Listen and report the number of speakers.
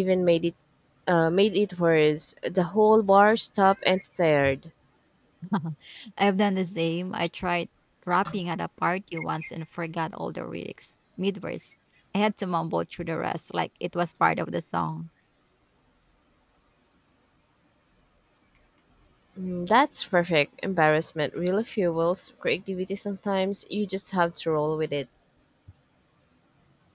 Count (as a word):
two